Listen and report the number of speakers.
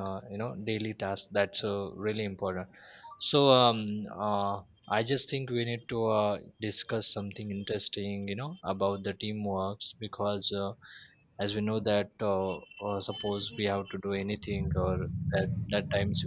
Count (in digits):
1